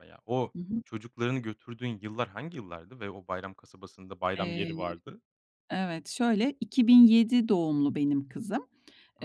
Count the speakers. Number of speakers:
2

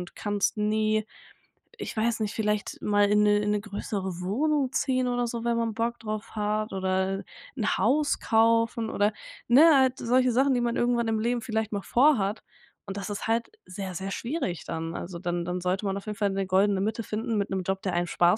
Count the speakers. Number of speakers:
1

